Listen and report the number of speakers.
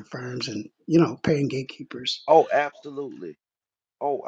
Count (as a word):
two